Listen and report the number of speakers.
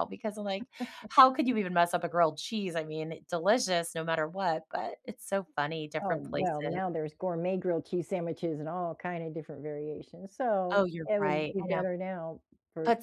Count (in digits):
2